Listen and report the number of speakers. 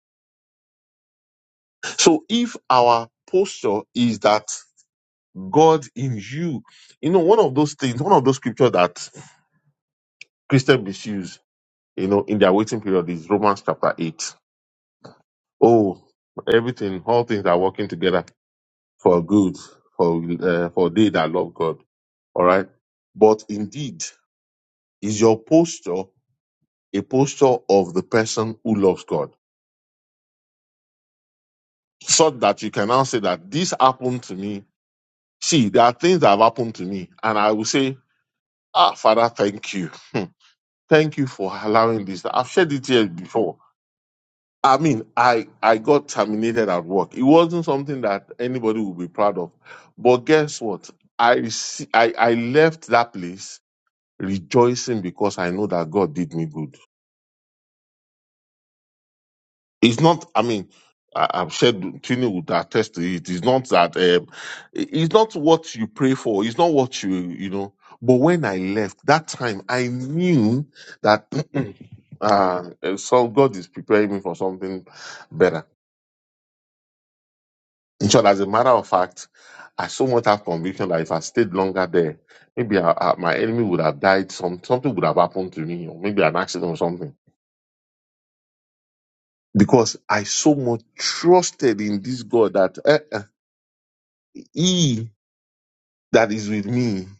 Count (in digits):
1